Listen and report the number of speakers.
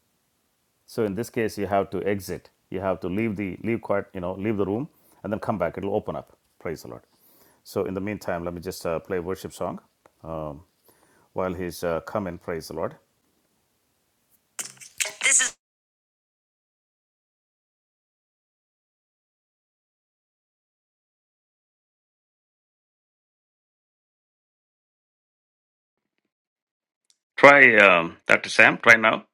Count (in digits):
1